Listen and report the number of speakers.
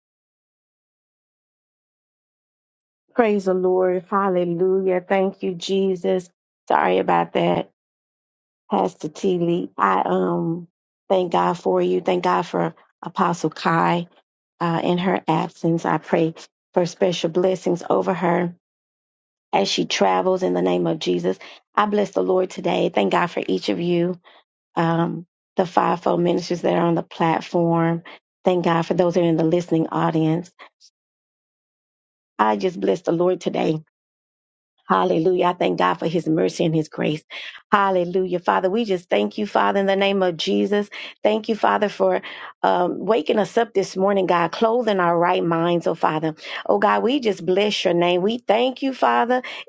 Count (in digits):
1